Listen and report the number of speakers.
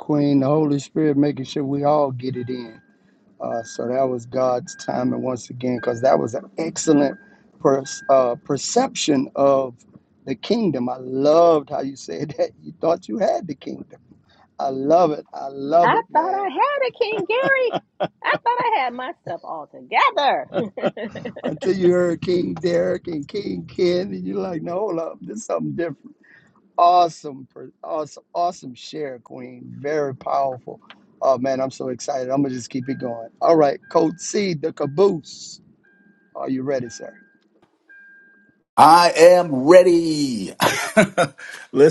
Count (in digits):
3